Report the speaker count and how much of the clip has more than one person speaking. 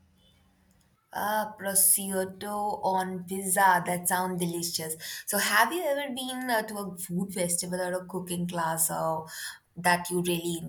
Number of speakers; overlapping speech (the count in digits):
1, no overlap